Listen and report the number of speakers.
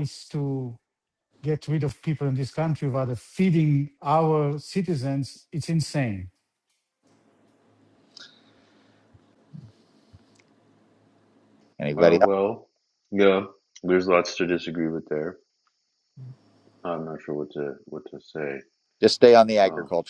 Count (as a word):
three